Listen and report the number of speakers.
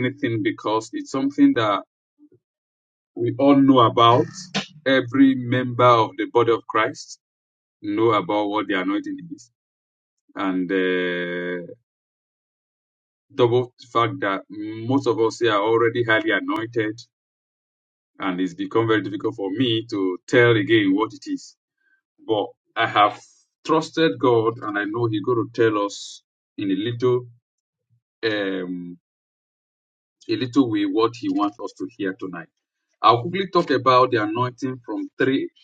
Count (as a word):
one